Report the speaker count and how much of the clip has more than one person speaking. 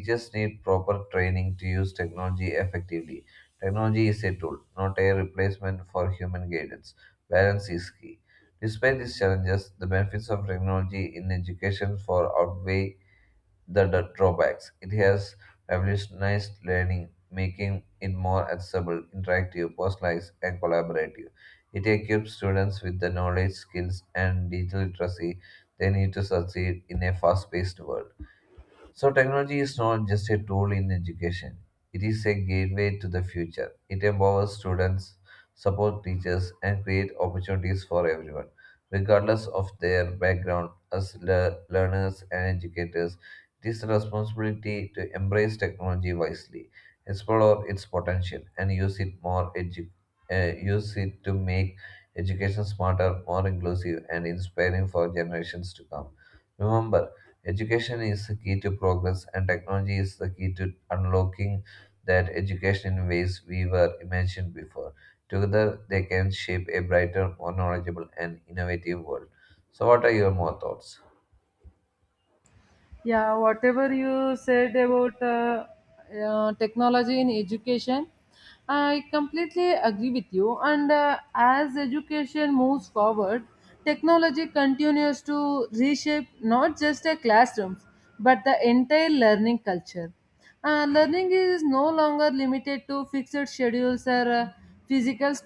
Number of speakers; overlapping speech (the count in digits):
2, no overlap